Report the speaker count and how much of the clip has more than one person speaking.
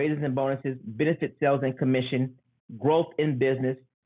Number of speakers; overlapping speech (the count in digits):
1, no overlap